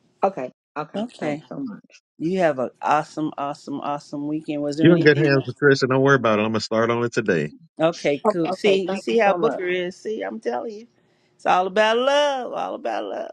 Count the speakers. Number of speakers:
3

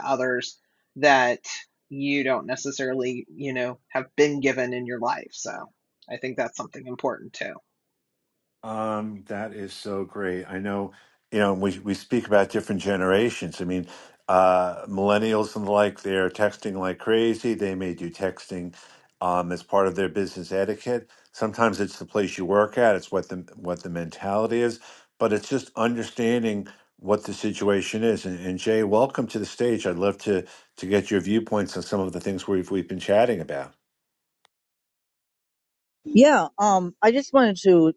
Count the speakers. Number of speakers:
3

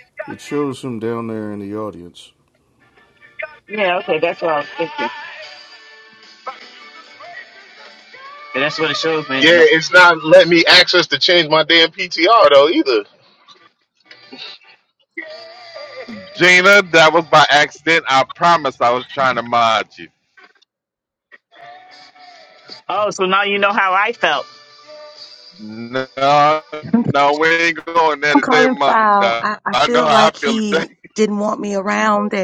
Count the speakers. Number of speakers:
5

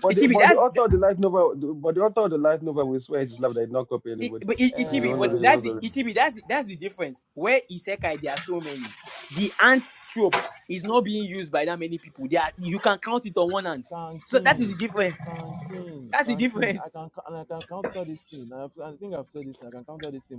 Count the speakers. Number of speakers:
3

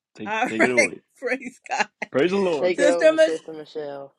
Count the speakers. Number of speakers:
3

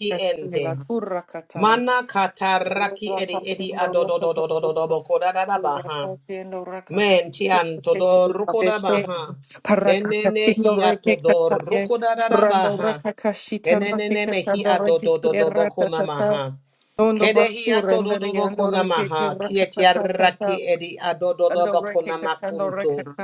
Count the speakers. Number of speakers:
2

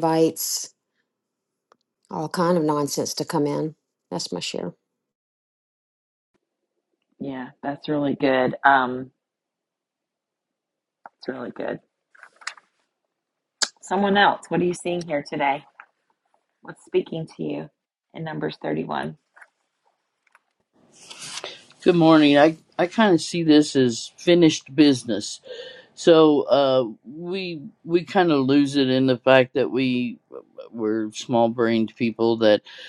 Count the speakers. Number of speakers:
3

